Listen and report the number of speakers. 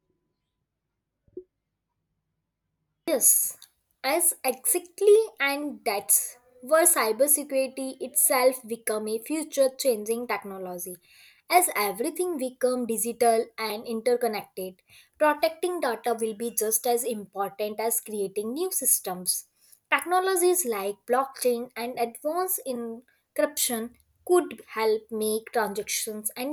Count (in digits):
1